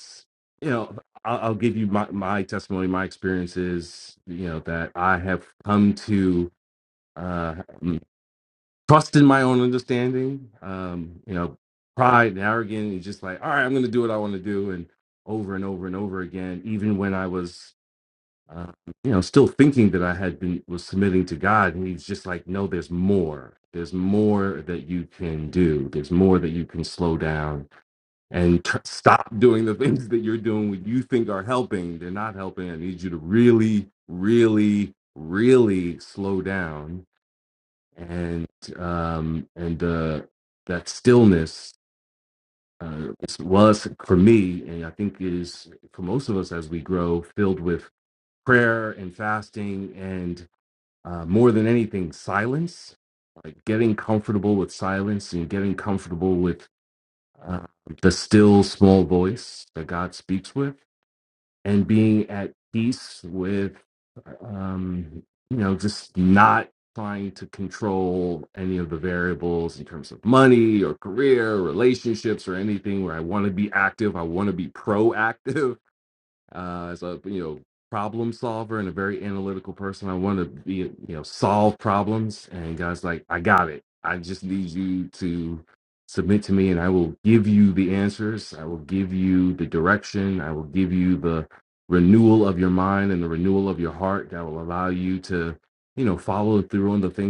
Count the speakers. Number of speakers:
1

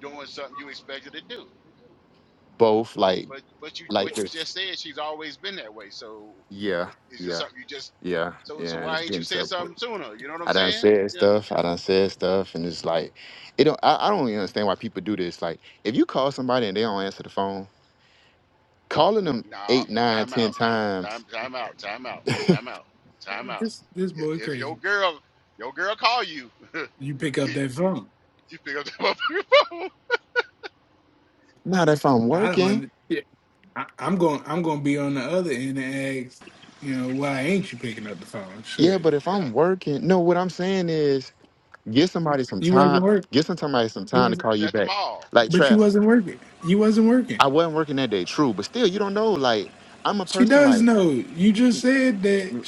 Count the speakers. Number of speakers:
3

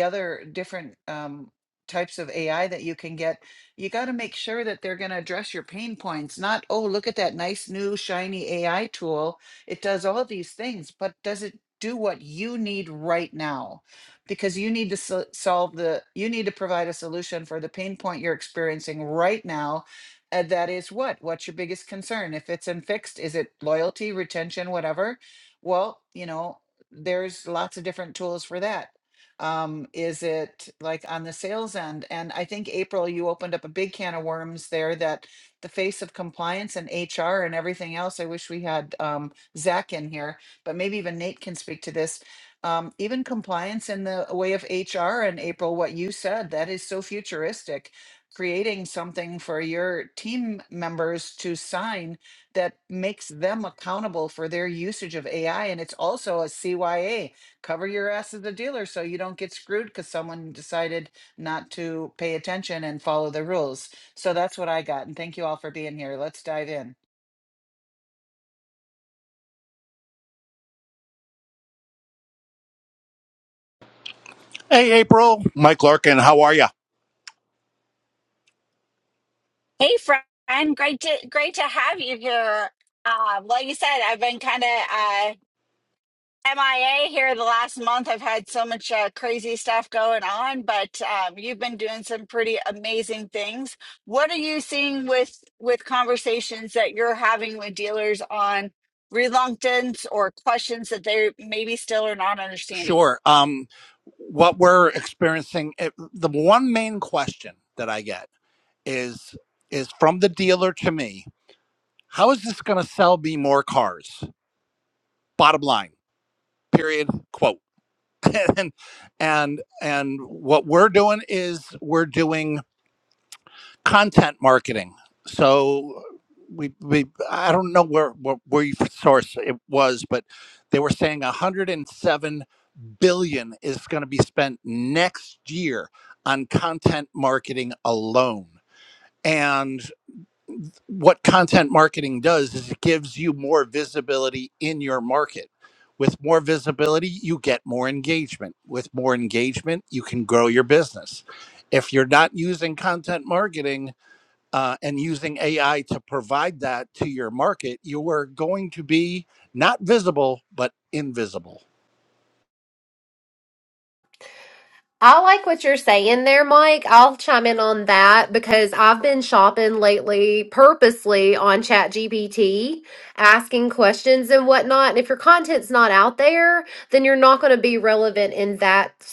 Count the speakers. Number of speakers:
4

